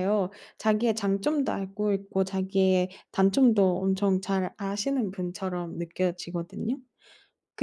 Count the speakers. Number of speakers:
one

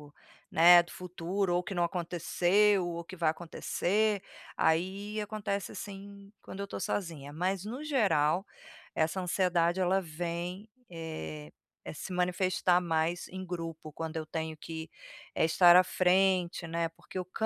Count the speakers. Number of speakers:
one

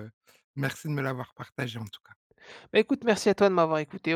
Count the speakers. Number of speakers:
two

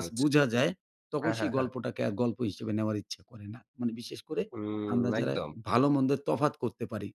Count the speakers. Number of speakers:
two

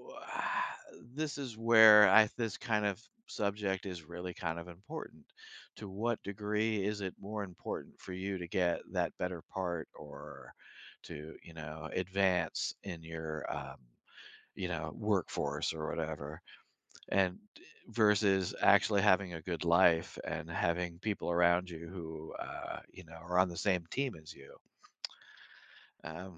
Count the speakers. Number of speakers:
one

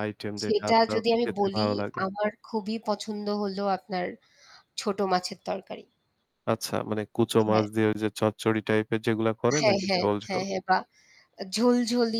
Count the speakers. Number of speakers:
two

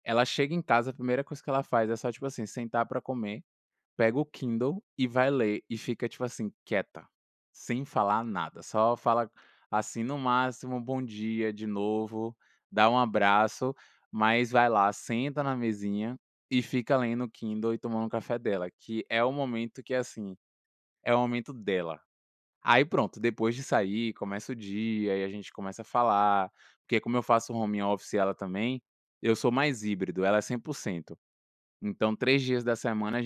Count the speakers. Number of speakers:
one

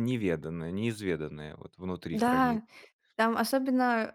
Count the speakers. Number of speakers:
two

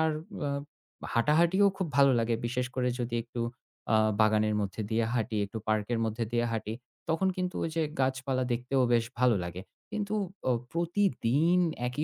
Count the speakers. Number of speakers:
one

